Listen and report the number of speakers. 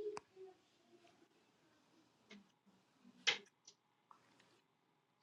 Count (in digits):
0